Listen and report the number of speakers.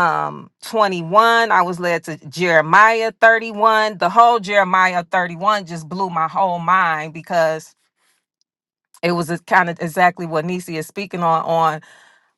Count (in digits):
1